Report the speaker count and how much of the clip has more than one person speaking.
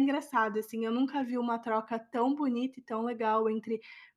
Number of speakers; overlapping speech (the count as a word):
one, no overlap